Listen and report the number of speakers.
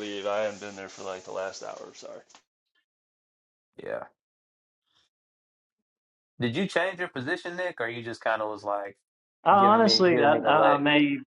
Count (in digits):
3